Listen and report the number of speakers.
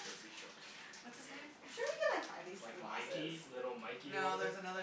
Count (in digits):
3